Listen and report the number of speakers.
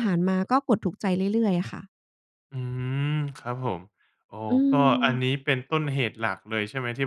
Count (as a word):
two